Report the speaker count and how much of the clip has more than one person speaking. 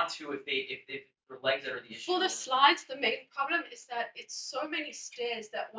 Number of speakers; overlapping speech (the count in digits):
2, about 13%